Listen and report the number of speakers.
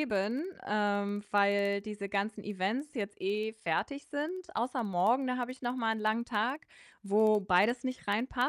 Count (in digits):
1